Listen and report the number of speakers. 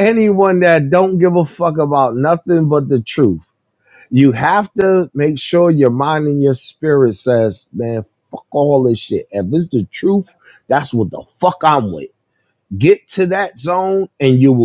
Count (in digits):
1